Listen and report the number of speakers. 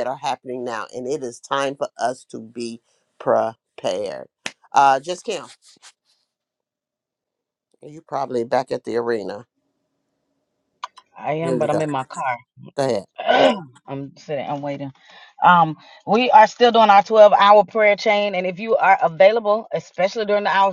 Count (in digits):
2